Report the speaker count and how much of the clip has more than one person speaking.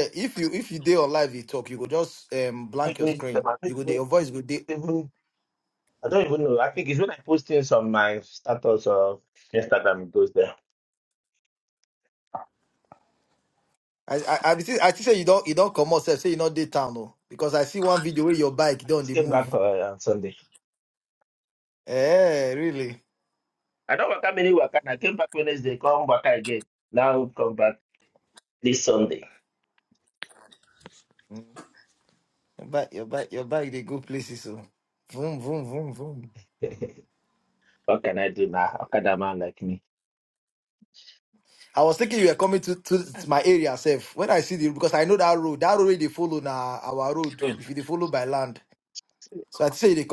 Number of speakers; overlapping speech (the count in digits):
2, about 3%